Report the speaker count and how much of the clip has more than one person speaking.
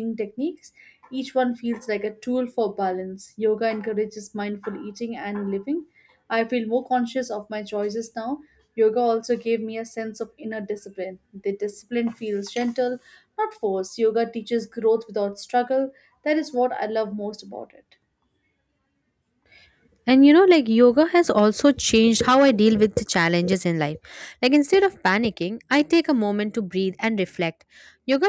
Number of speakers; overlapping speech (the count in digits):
2, no overlap